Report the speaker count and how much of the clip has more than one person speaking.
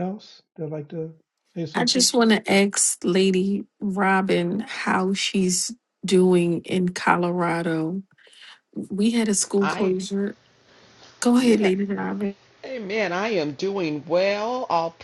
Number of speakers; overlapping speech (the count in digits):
3, about 6%